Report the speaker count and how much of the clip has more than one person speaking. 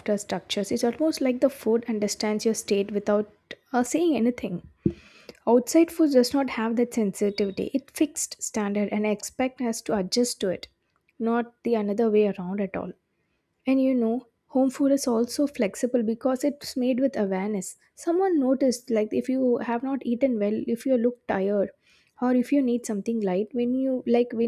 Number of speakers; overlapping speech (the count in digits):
1, no overlap